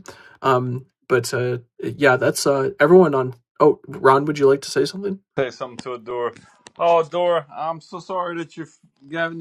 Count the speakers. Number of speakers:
two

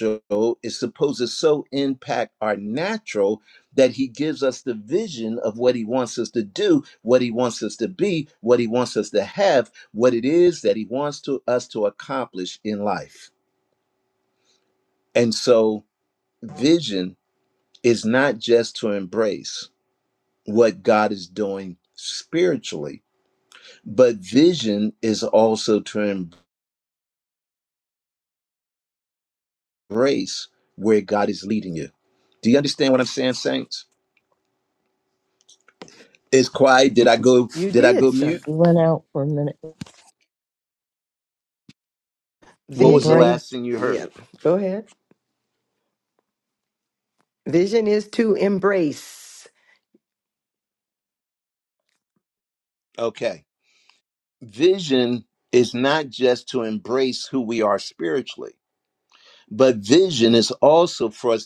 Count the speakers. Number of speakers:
three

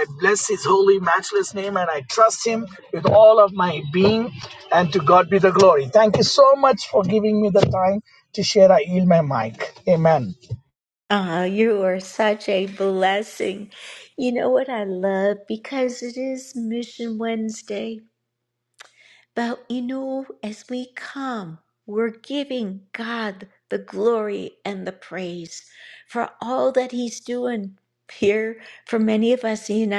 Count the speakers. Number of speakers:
two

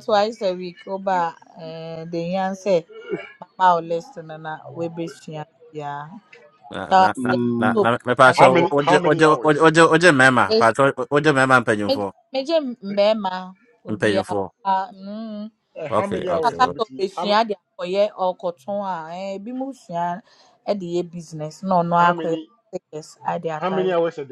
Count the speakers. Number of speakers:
three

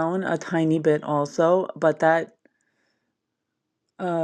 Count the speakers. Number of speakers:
one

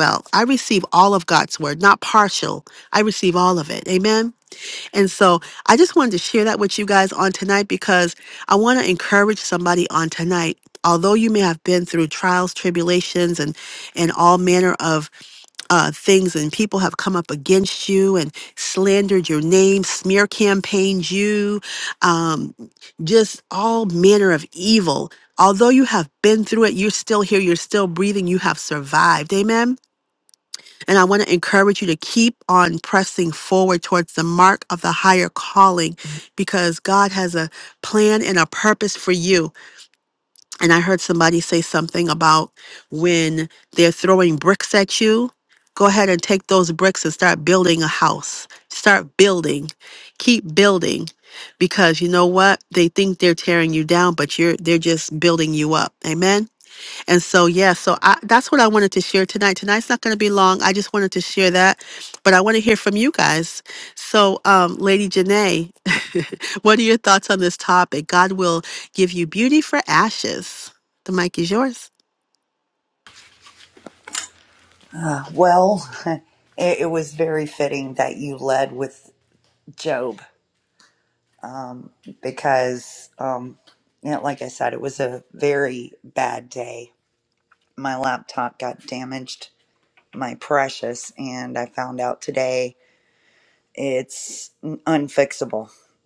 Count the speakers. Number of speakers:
two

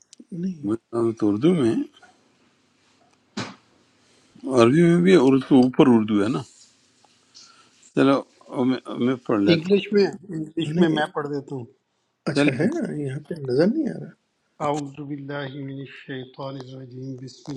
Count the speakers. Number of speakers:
three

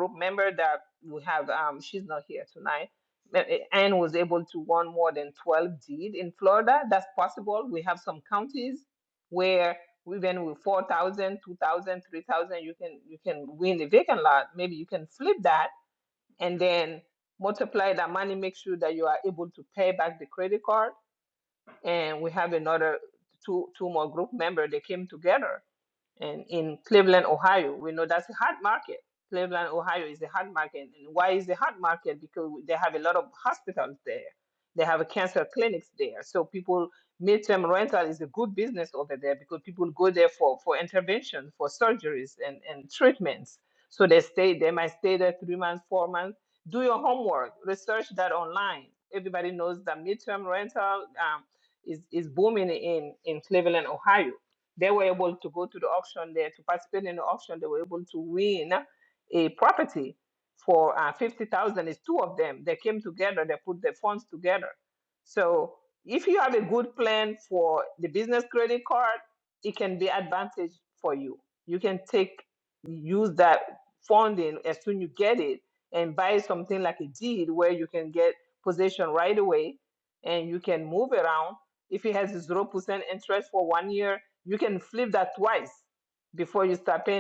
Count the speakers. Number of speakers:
one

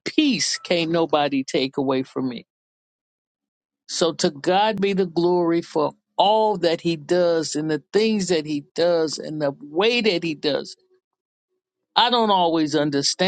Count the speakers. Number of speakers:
one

